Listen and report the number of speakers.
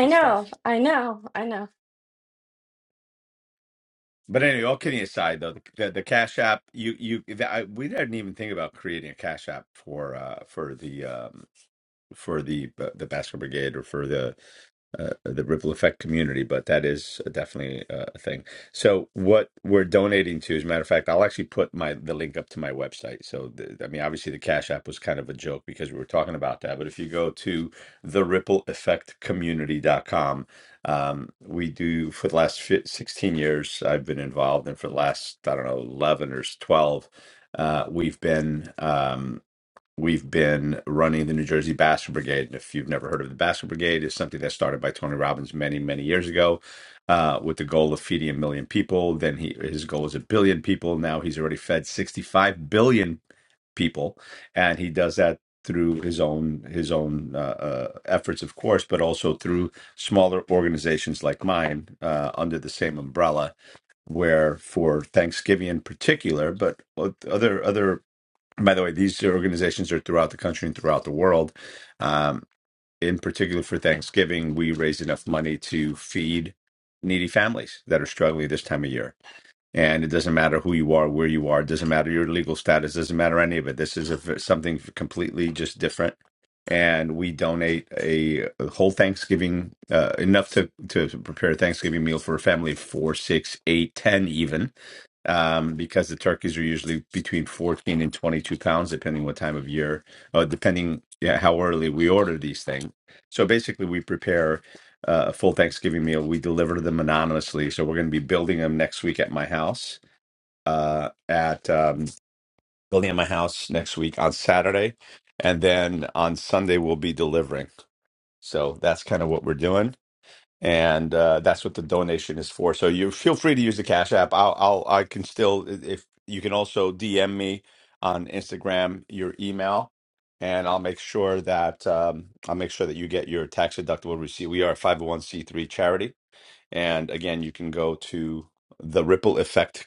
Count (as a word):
two